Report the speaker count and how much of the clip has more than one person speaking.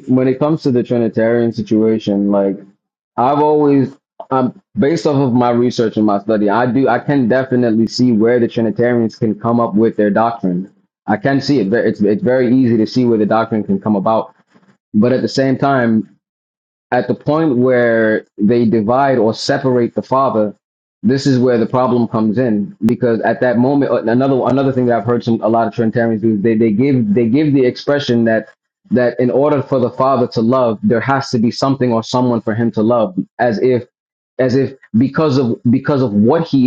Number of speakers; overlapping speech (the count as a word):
one, no overlap